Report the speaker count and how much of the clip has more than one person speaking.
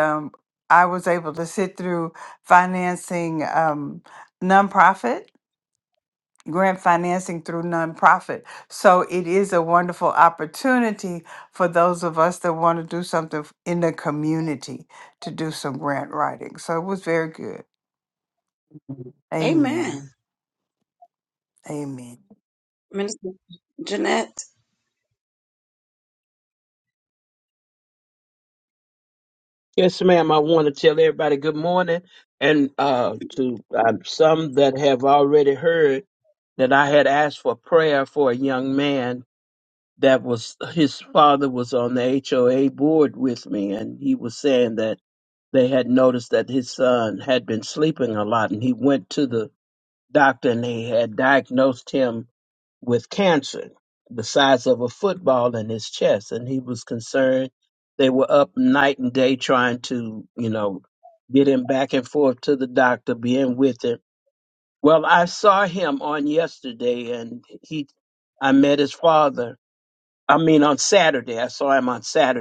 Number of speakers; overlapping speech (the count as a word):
three, about 1%